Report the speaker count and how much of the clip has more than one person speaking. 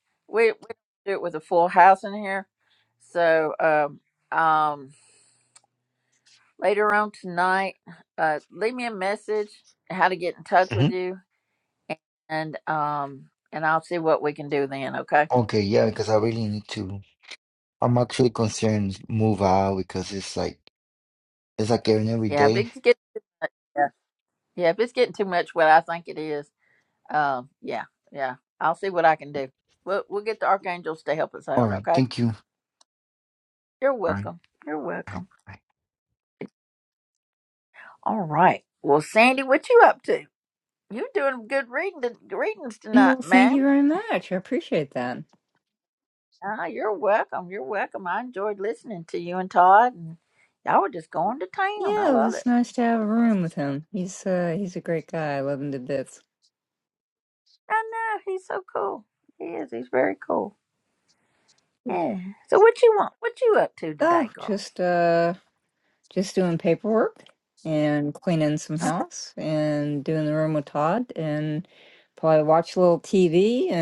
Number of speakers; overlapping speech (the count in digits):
3, about 4%